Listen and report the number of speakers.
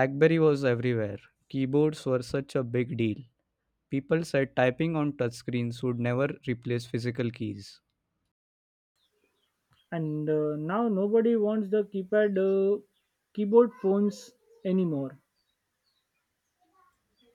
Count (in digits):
2